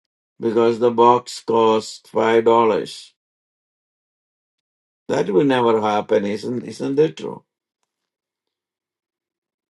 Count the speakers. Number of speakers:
1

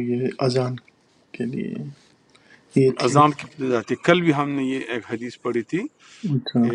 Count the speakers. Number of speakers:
2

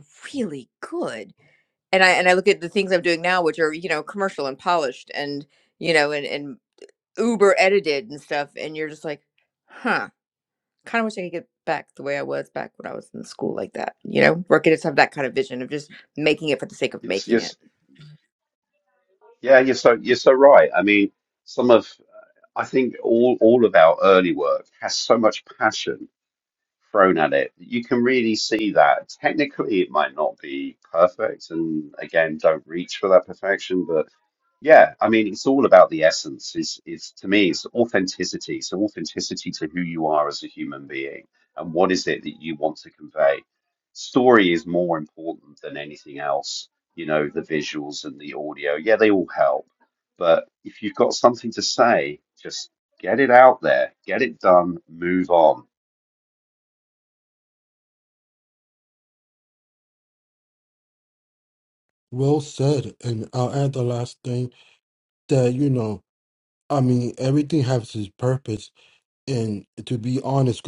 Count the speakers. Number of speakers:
3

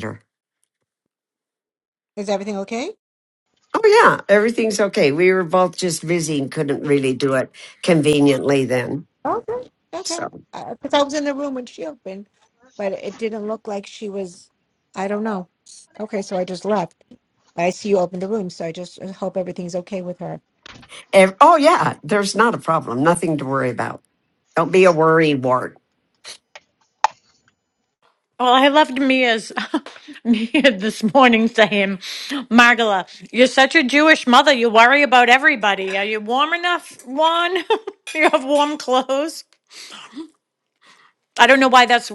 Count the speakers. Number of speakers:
3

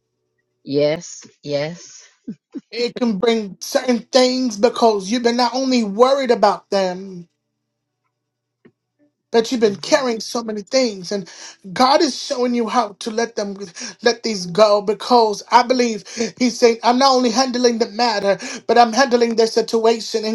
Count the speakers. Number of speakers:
2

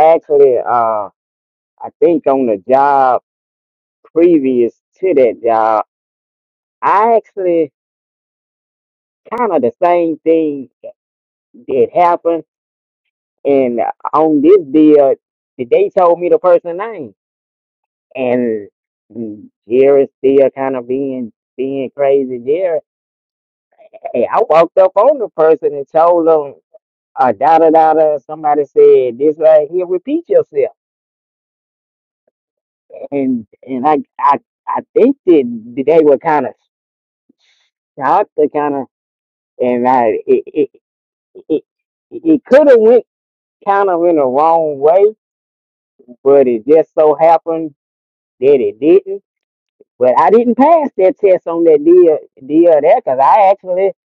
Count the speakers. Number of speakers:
1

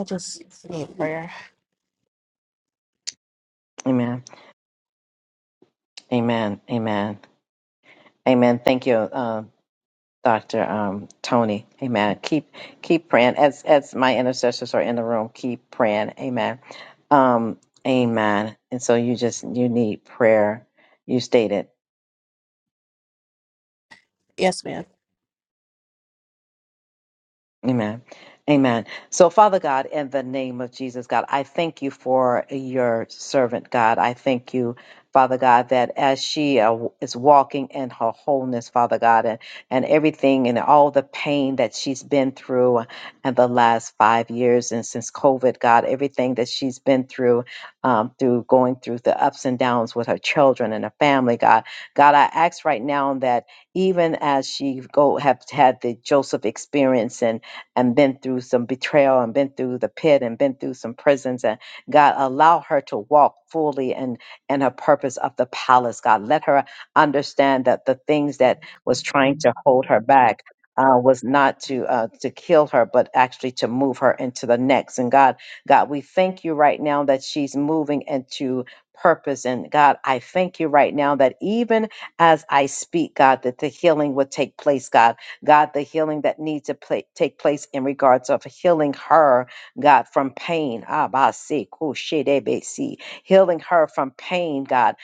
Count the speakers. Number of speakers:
2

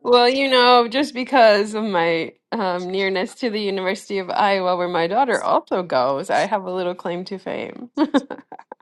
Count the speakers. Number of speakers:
1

